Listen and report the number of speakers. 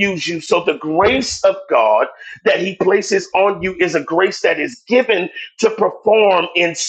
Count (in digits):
1